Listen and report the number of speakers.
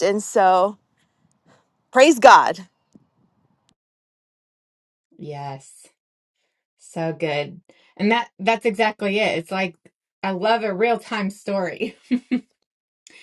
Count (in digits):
2